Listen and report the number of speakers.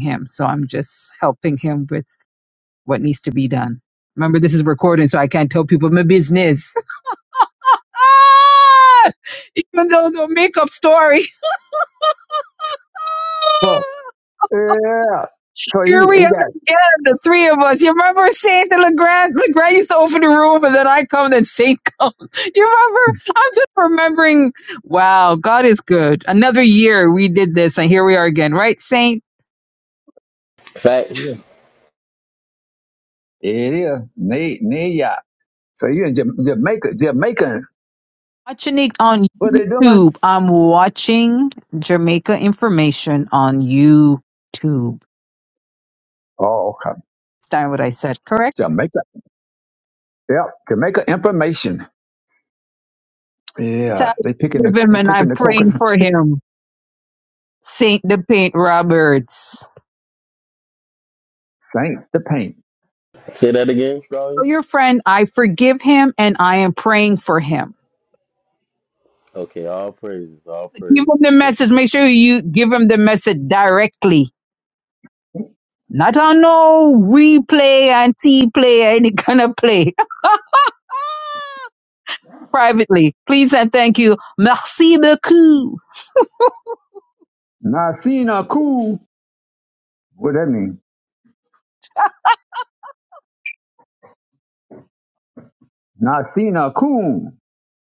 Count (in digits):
3